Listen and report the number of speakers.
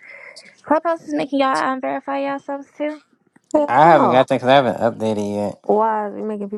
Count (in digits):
3